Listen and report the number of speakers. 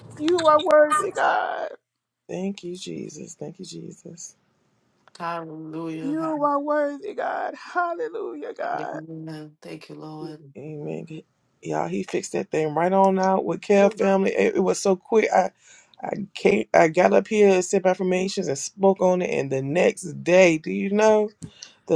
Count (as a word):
three